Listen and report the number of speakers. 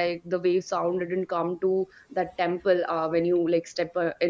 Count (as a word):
one